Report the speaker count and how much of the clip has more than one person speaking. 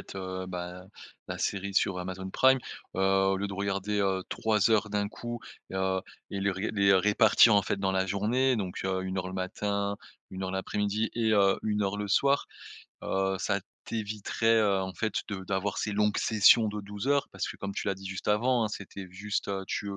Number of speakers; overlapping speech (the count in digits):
1, no overlap